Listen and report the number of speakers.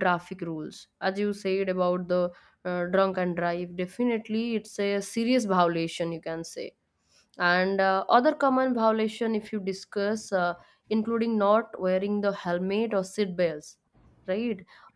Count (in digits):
1